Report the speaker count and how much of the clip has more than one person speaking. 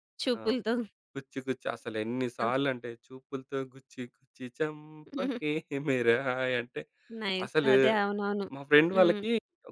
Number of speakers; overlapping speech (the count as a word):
two, about 10%